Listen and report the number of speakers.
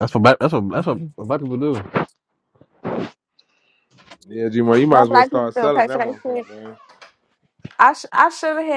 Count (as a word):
three